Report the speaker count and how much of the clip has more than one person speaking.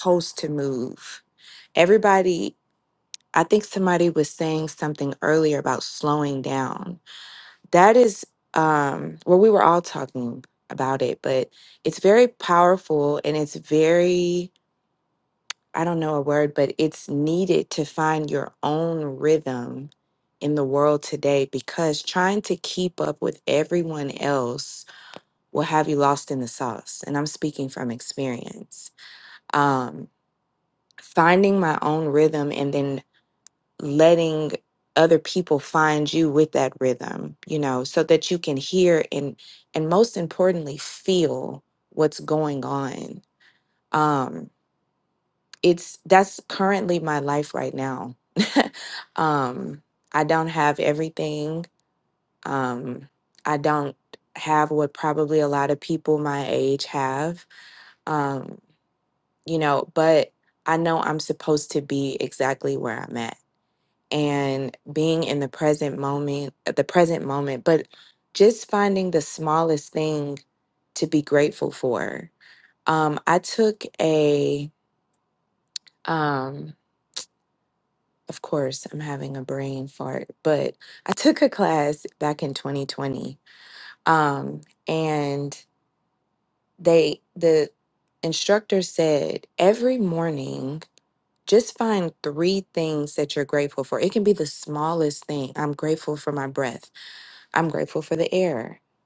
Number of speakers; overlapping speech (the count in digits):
1, no overlap